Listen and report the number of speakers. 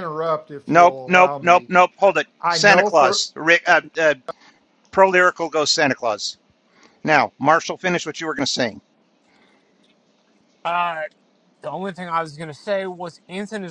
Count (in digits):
3